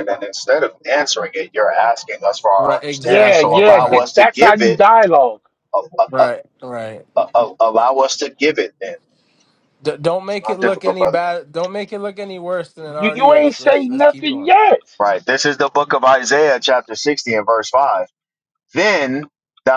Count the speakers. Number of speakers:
three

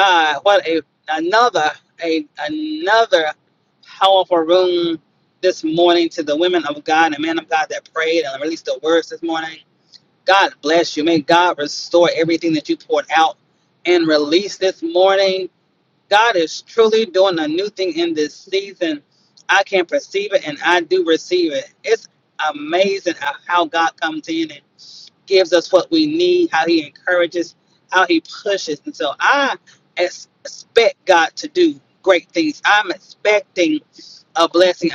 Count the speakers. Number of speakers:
one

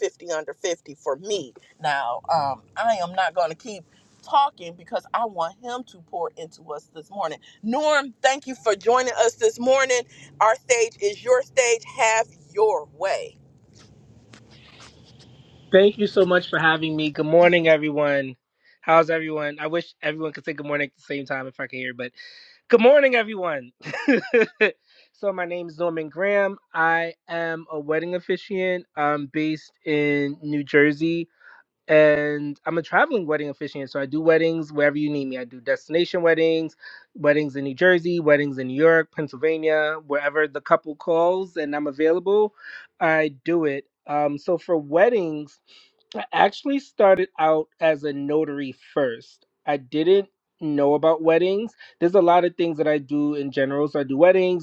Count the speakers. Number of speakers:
two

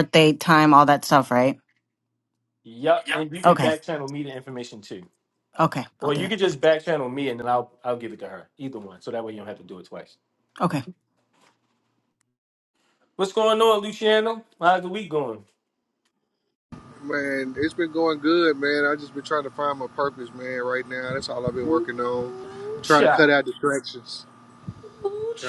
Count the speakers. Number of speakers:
three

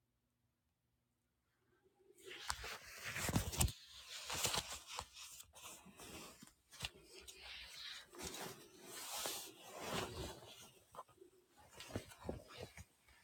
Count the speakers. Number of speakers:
zero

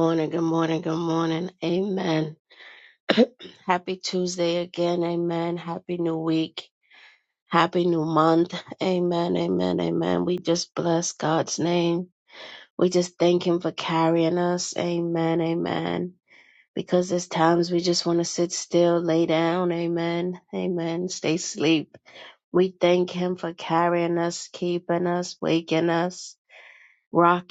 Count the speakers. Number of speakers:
one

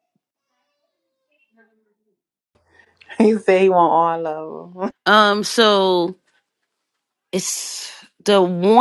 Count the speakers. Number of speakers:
two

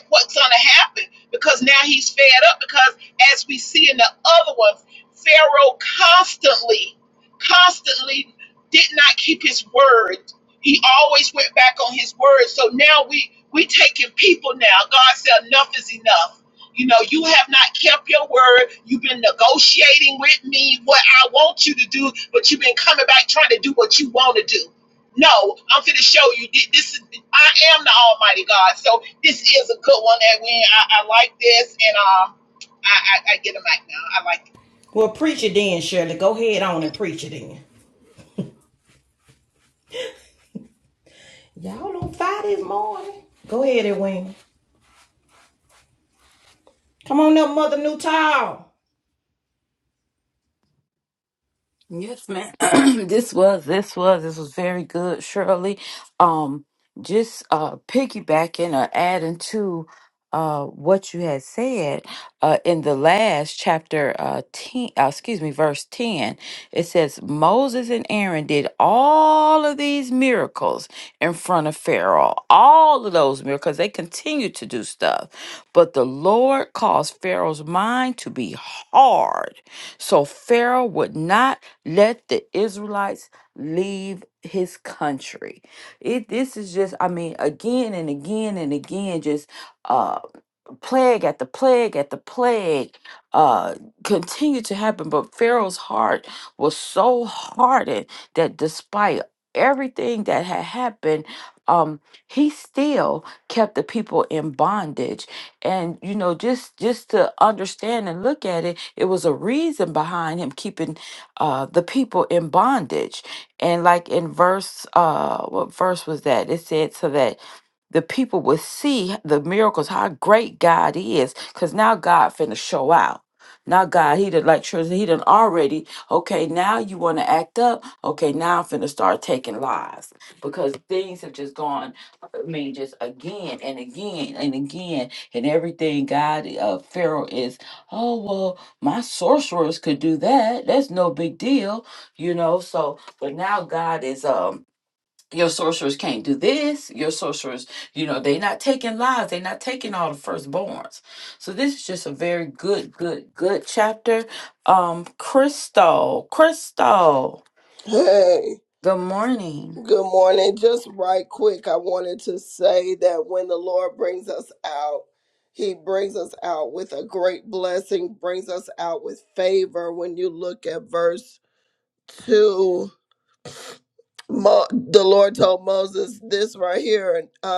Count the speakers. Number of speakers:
four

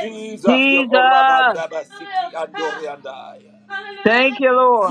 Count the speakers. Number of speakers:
three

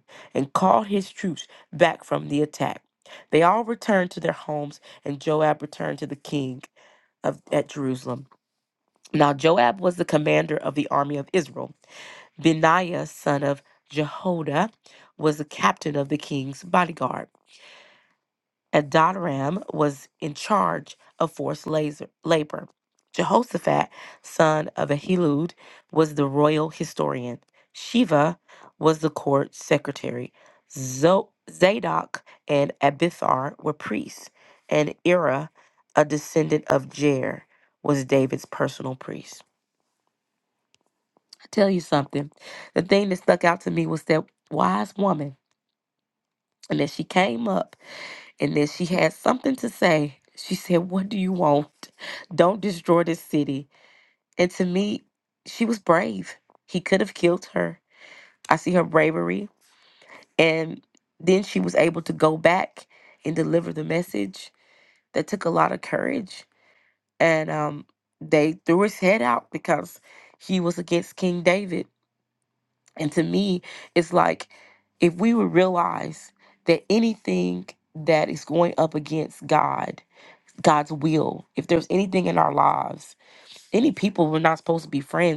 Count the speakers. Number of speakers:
one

